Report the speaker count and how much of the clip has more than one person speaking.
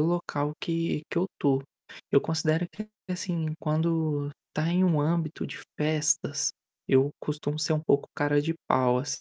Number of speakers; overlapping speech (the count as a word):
one, no overlap